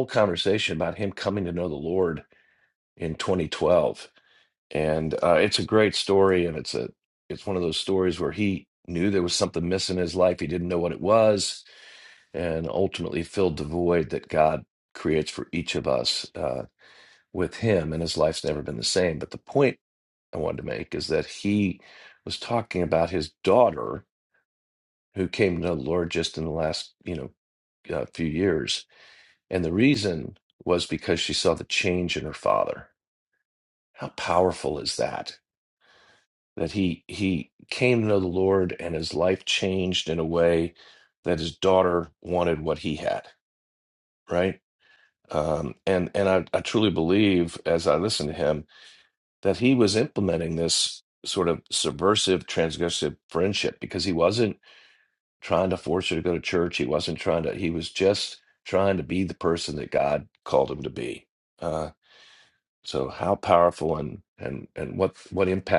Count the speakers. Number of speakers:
1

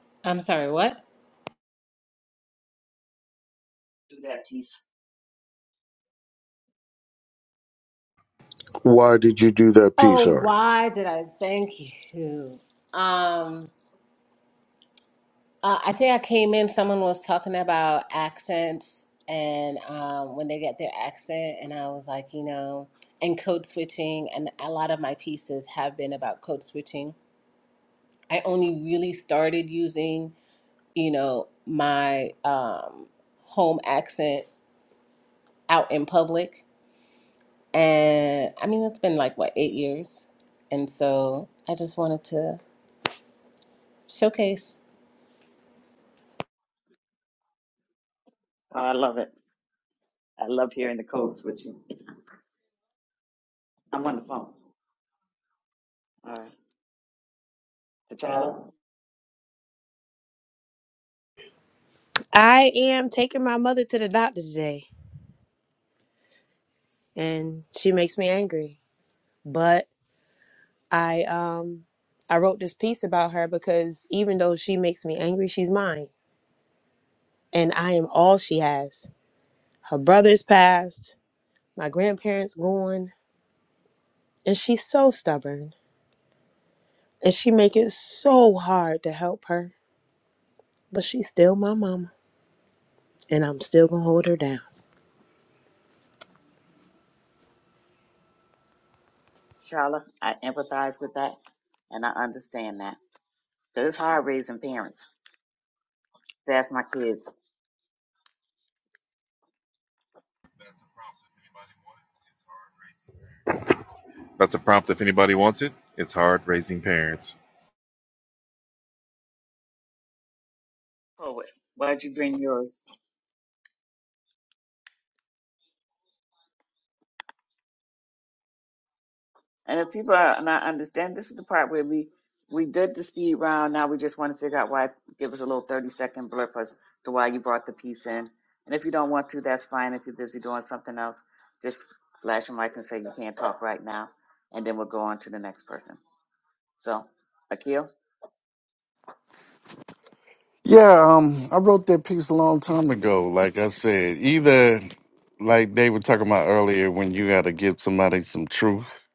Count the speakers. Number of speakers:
6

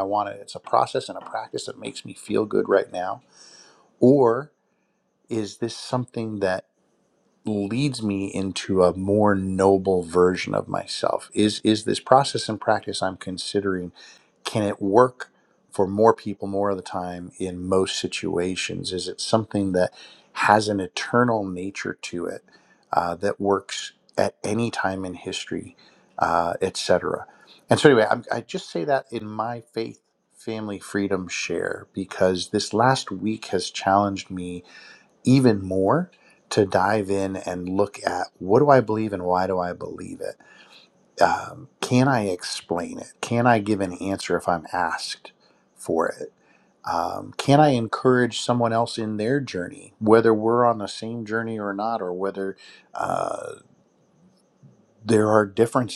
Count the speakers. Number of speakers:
1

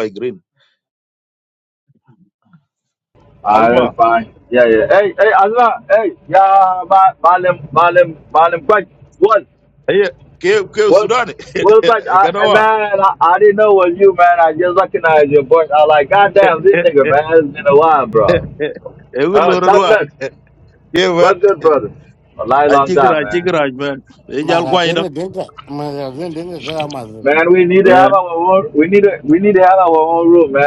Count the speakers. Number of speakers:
3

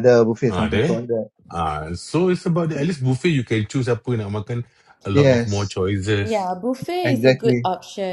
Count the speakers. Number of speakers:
3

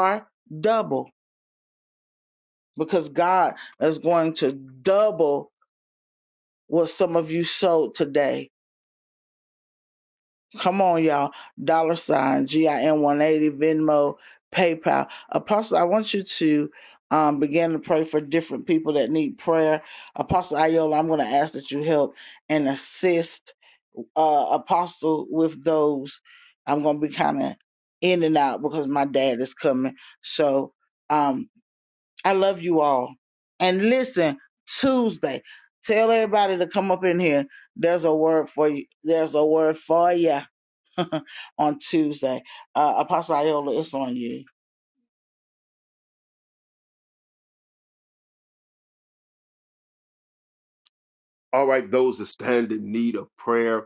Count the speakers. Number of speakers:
2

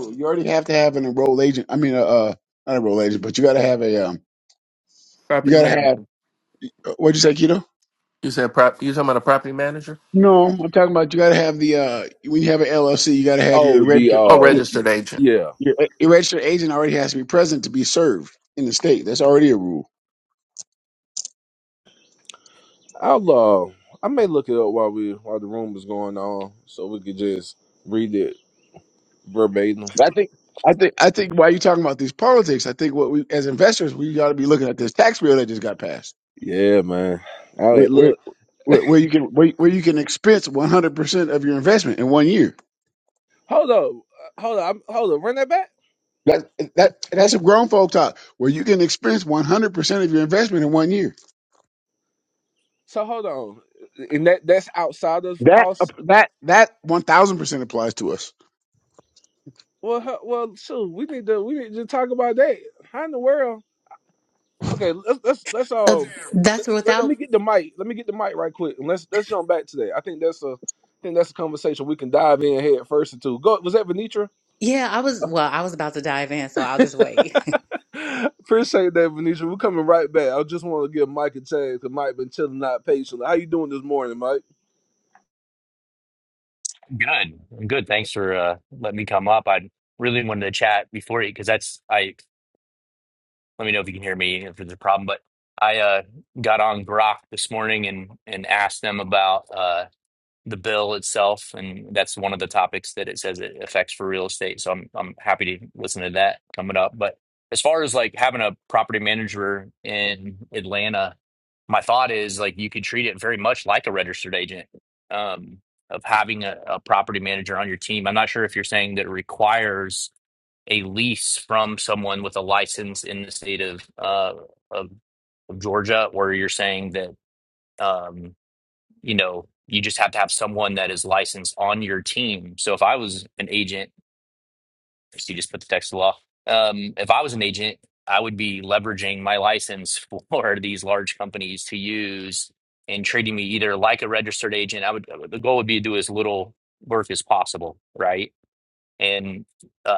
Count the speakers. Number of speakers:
5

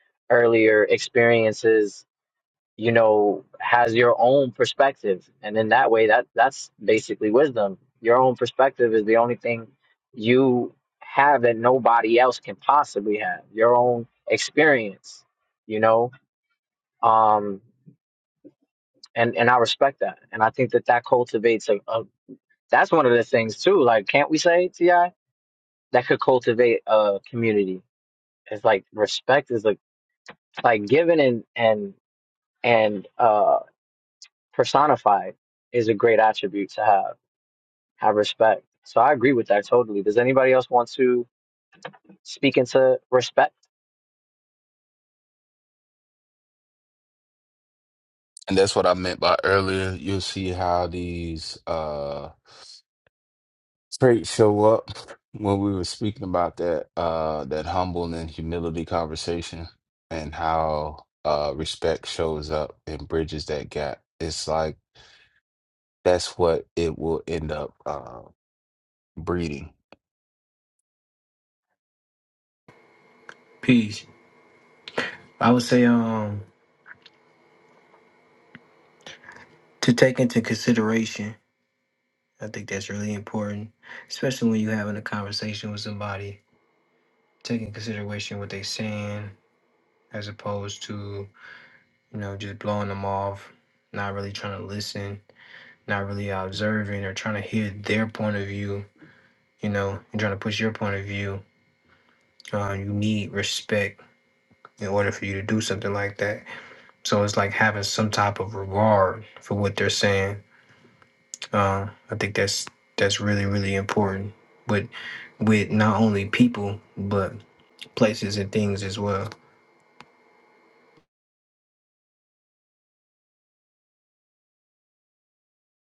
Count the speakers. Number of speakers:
3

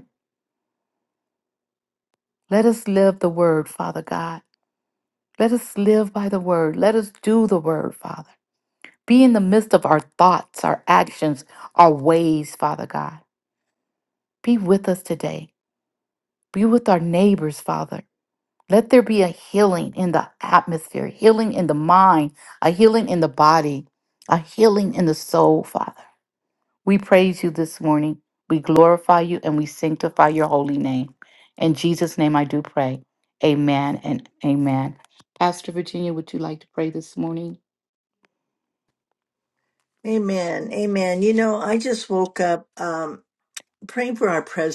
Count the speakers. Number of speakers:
2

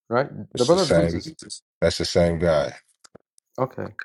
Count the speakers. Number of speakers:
2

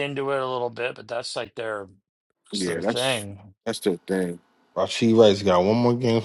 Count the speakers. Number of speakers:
3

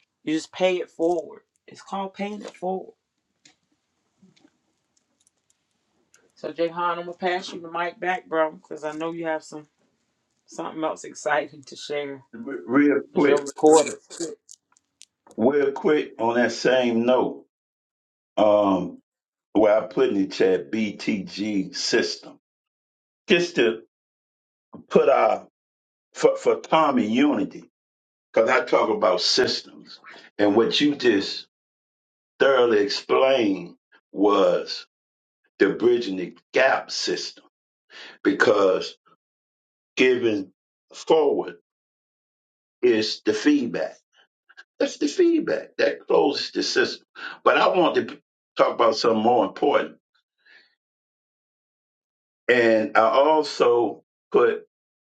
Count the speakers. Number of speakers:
2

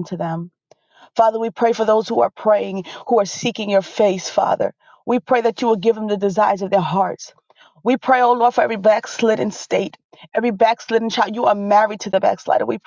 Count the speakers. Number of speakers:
1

